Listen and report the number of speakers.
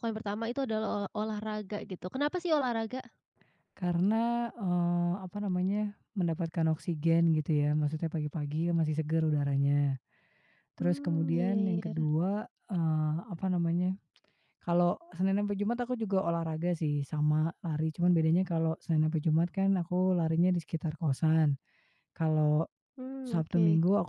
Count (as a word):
two